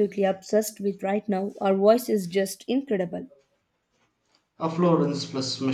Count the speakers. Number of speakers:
two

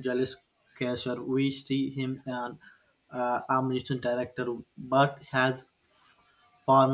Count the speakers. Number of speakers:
one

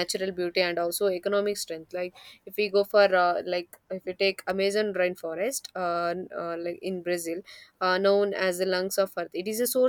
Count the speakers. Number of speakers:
one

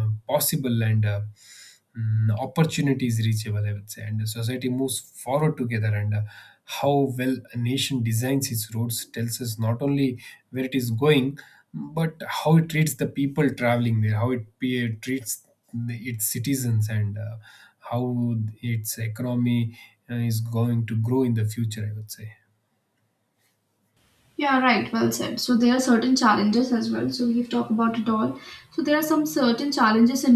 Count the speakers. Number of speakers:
two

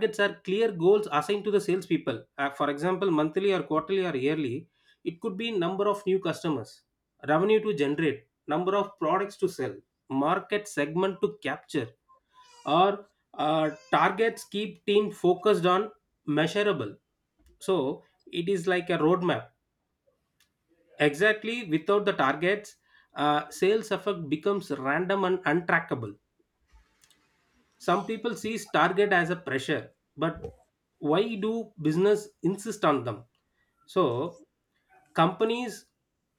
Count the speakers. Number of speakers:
one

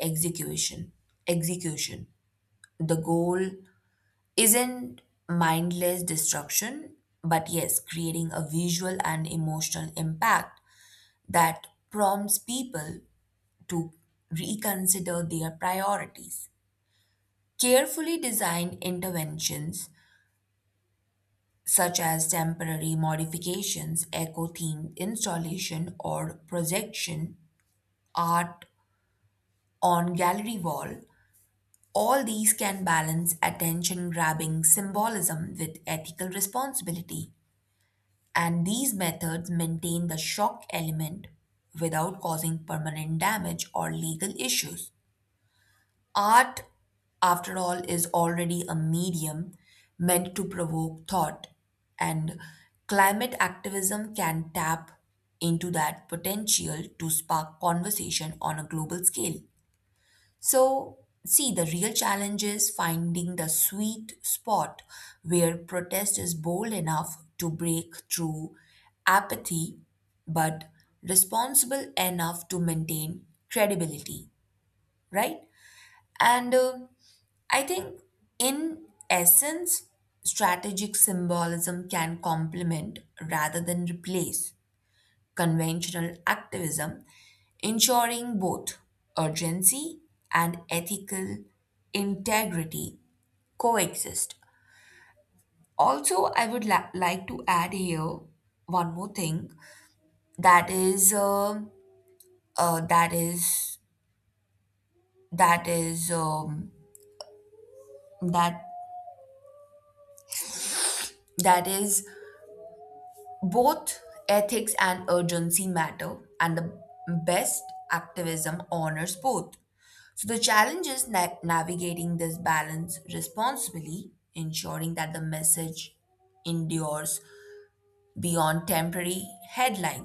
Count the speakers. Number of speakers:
one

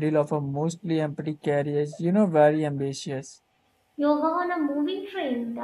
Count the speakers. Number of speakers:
two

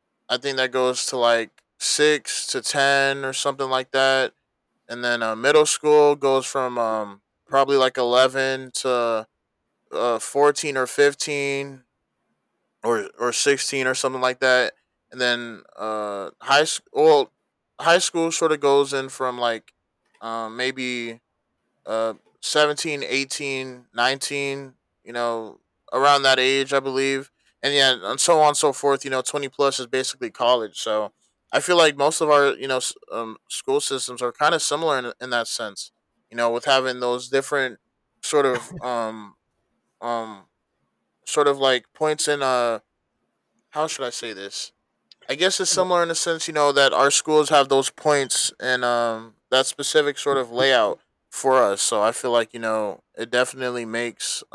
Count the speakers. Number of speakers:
one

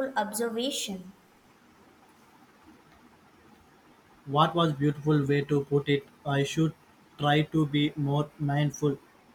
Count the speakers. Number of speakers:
two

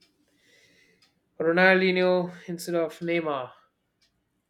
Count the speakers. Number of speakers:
one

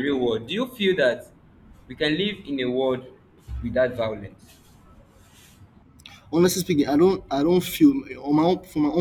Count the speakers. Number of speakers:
two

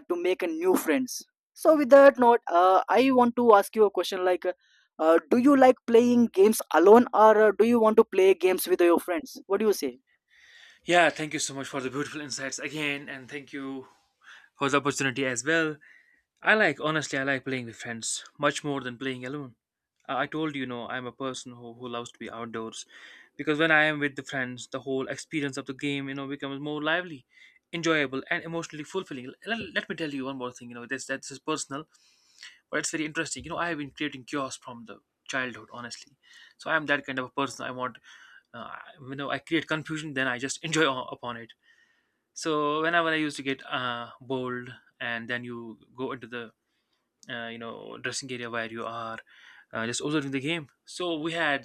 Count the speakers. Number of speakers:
two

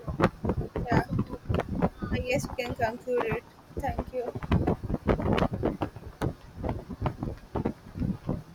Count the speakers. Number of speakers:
two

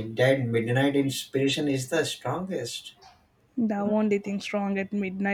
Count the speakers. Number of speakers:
two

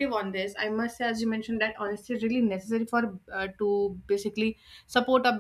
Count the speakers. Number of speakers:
one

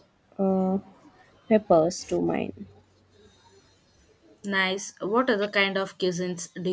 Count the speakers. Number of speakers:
two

